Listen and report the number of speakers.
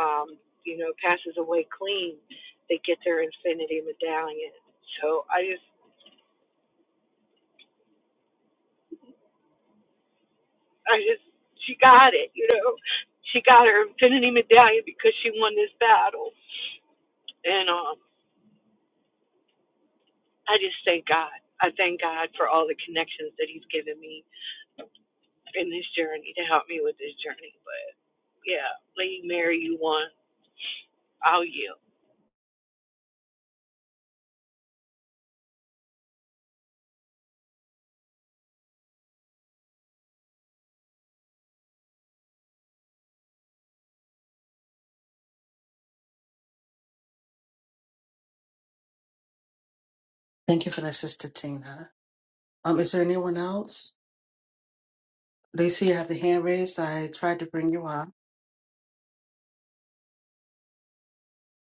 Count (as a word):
two